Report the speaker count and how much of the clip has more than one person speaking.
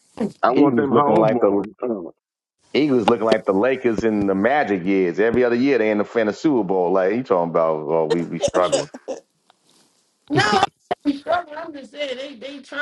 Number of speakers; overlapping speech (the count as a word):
three, about 9%